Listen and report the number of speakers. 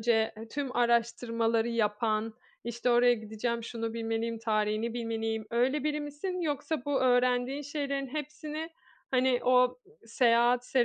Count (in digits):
1